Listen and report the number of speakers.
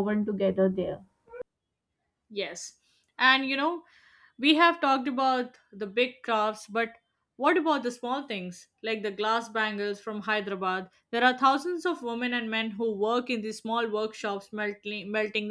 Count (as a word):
two